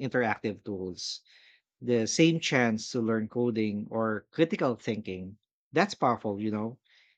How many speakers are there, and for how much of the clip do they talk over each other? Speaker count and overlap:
1, no overlap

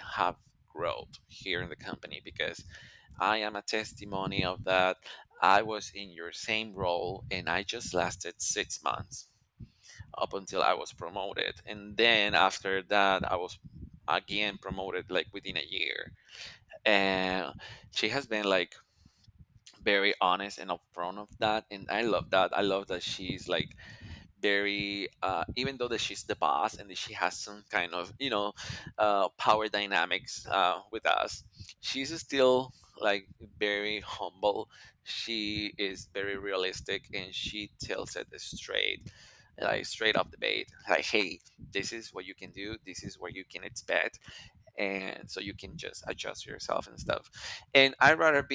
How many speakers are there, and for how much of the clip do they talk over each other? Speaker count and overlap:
1, no overlap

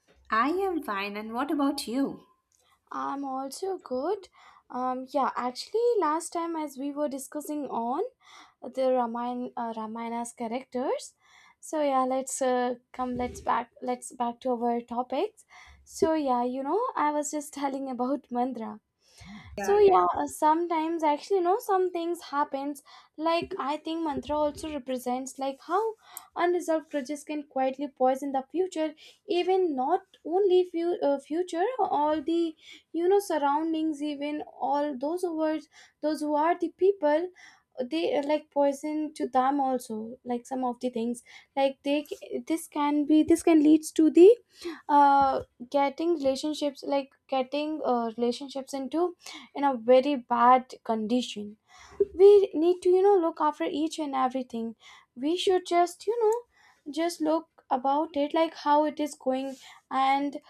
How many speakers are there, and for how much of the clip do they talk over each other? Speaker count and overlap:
2, under 1%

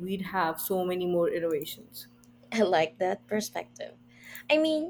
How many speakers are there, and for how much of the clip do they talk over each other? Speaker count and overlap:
2, no overlap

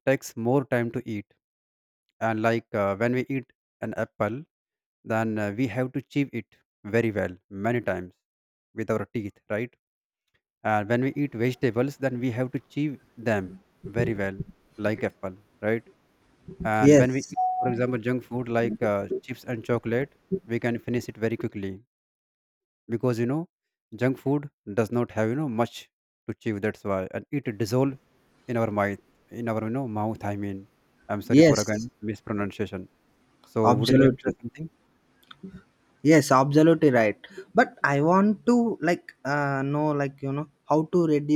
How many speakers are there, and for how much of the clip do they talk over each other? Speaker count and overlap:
2, about 4%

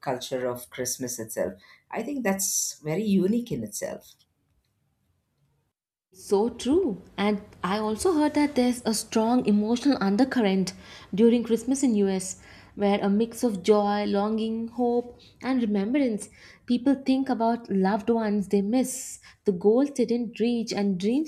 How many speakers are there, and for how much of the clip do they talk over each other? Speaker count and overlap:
2, no overlap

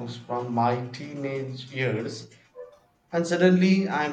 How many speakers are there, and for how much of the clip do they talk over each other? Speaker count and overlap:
1, no overlap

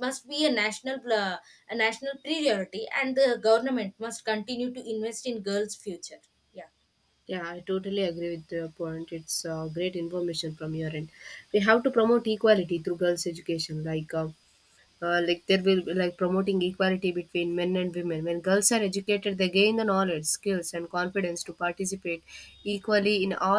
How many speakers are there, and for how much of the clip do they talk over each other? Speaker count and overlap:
2, no overlap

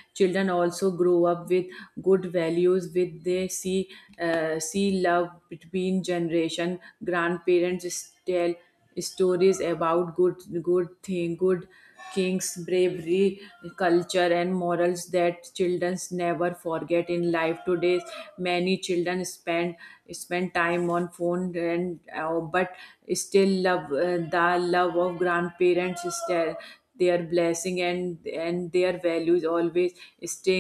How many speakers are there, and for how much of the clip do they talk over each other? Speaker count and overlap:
1, no overlap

